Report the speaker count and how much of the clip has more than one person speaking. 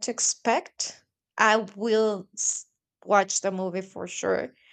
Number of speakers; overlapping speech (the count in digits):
1, no overlap